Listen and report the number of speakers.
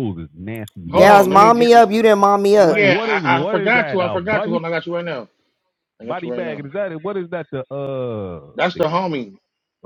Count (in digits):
3